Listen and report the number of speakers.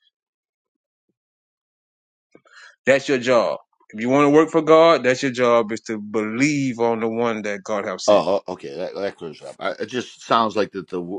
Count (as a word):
two